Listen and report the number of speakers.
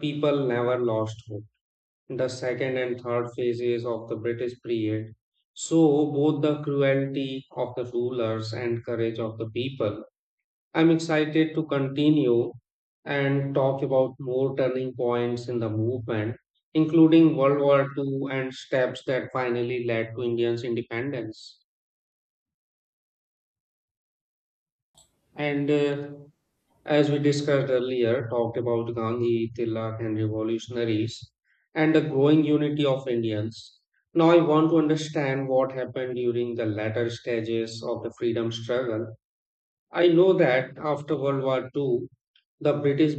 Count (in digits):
1